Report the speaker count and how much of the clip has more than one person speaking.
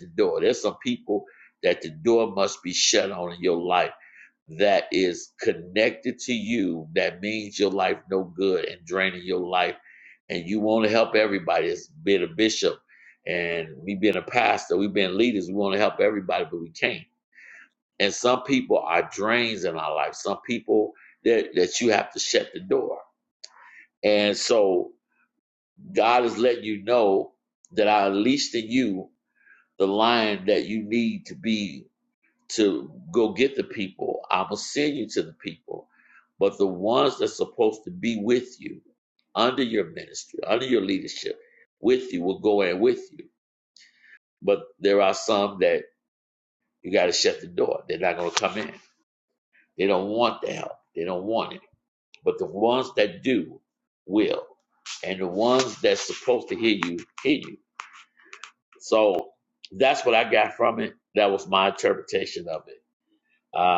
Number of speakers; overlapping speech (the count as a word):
one, no overlap